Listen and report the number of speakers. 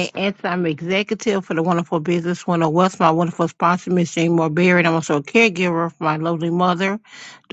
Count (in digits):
1